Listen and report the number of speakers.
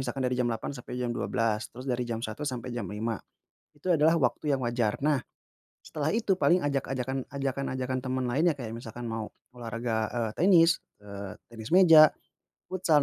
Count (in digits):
1